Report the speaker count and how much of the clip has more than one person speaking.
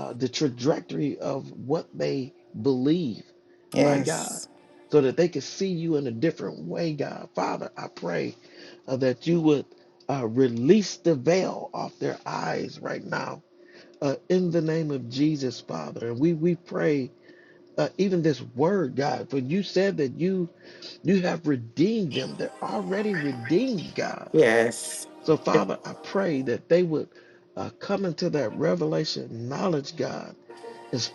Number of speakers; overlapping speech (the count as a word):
two, about 2%